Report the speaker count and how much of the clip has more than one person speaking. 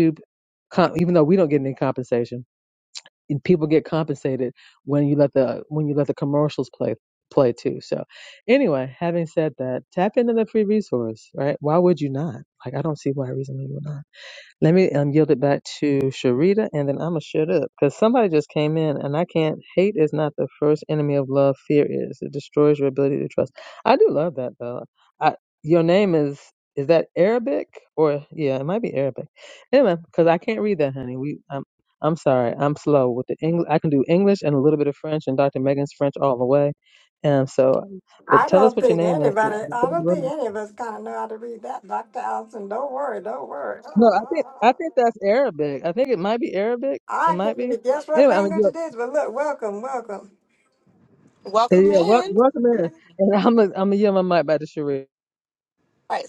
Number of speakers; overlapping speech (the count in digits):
3, about 7%